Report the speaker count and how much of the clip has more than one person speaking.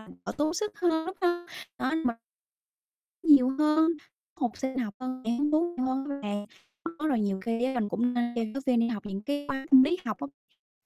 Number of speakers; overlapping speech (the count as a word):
one, no overlap